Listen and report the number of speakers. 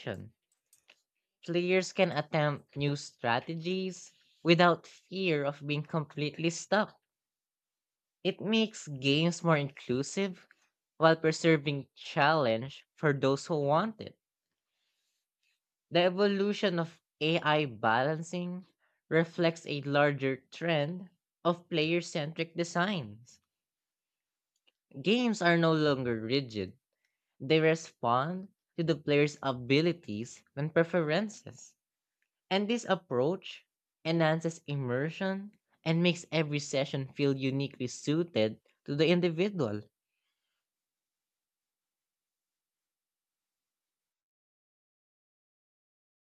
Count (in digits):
1